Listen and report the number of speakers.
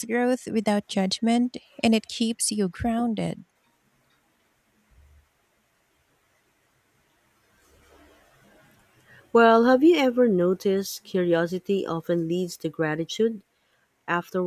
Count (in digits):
2